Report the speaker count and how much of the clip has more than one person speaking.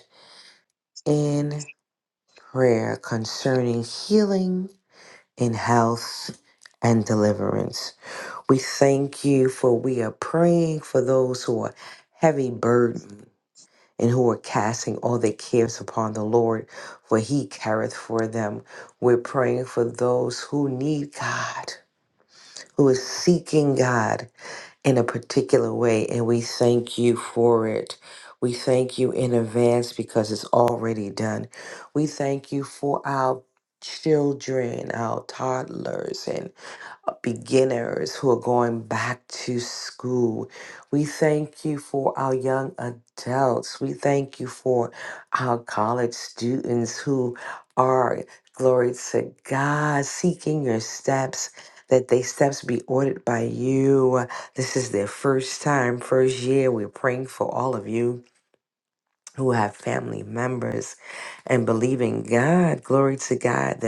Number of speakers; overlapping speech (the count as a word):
one, no overlap